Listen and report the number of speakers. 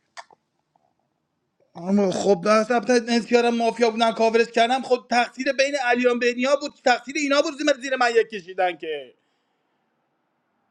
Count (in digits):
1